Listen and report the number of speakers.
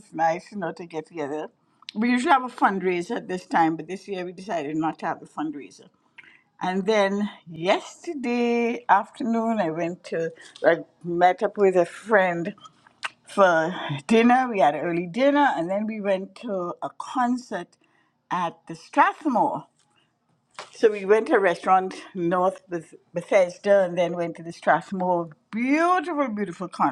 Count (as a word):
one